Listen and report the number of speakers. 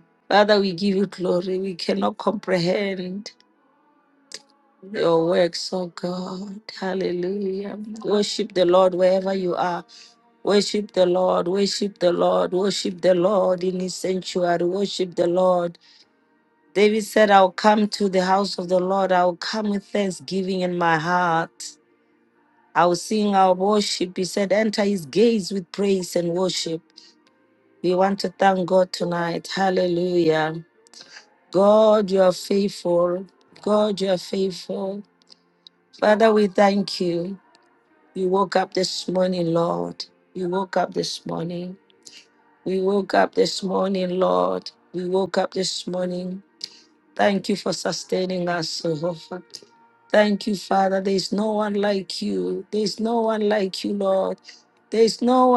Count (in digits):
1